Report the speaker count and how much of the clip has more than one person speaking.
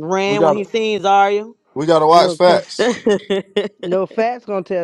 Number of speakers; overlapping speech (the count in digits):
3, about 17%